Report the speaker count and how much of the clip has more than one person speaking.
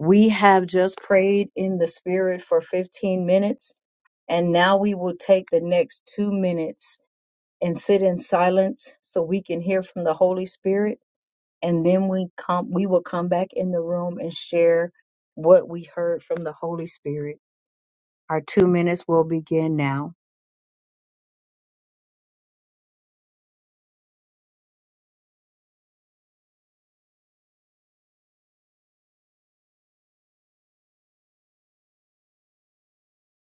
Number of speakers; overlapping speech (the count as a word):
one, no overlap